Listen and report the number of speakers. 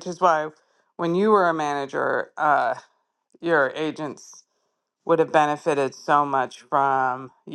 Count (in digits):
1